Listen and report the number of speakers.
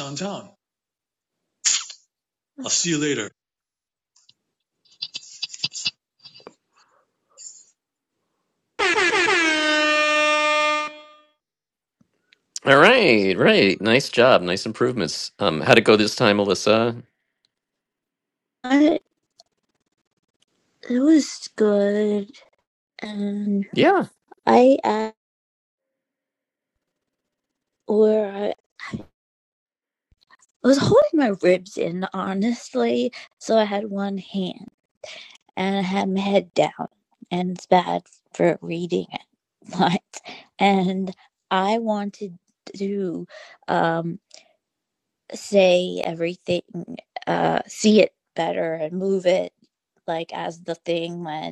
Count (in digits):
3